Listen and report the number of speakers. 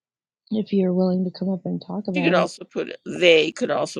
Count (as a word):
two